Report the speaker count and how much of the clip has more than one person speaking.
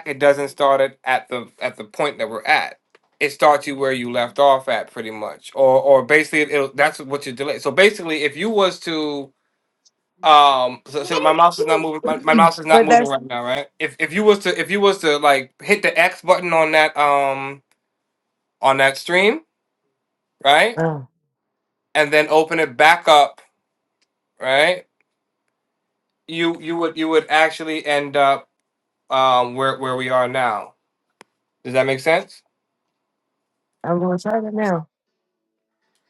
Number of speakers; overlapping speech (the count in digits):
2, about 2%